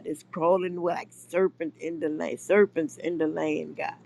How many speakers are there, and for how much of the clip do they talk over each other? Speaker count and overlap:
1, no overlap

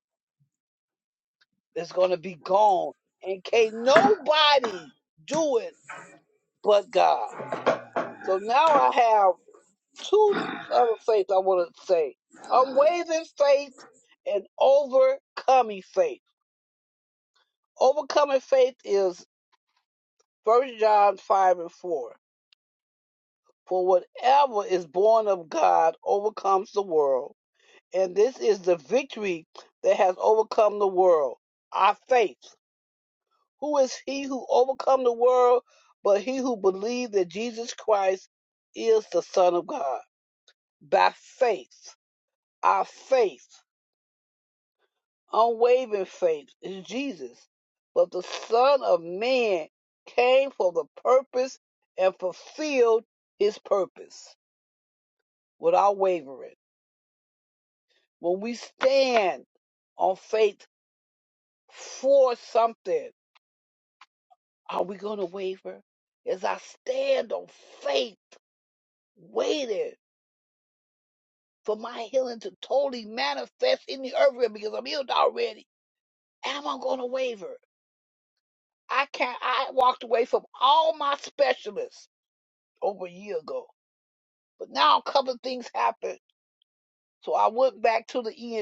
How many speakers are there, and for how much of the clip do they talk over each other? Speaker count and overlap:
1, no overlap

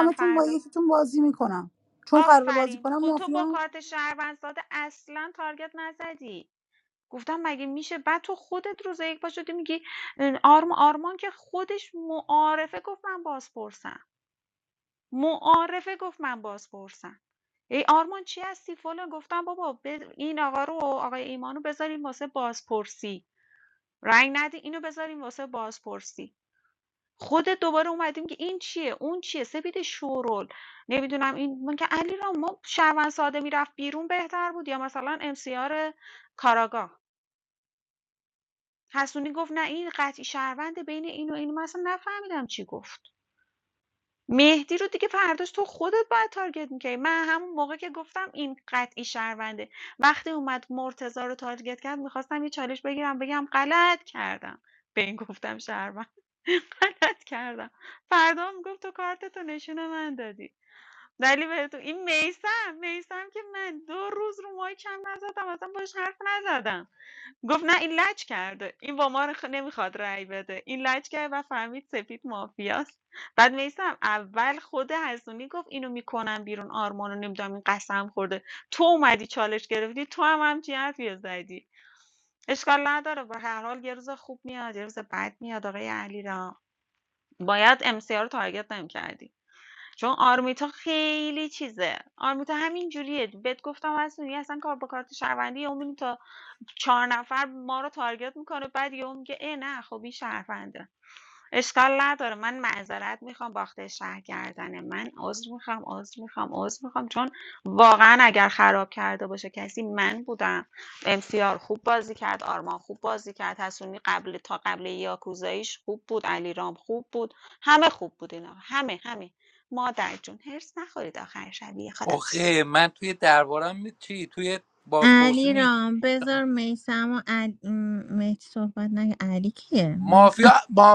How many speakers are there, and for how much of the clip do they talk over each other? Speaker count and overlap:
4, about 3%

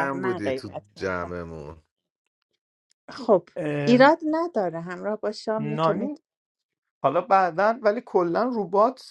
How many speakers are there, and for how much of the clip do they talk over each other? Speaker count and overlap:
3, about 18%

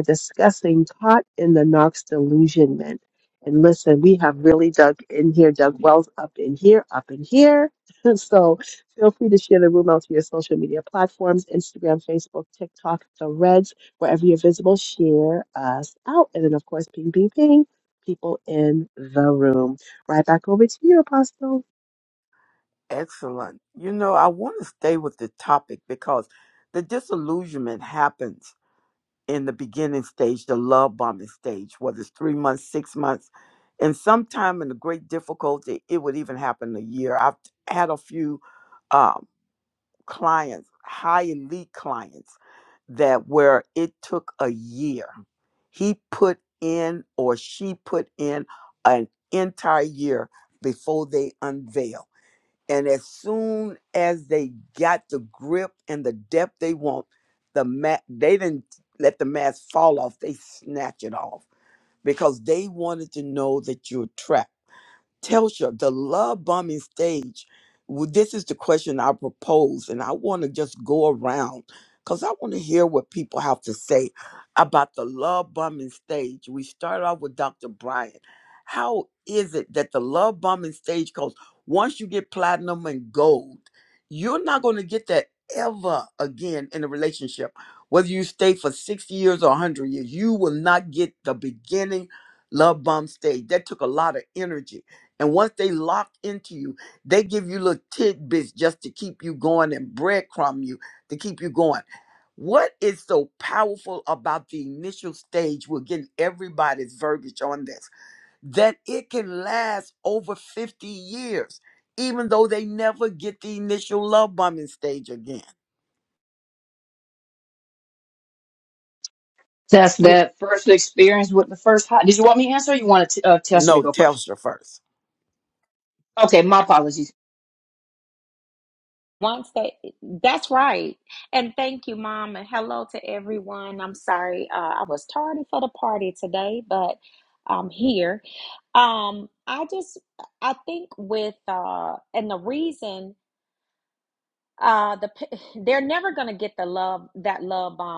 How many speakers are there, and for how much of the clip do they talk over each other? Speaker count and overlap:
4, under 1%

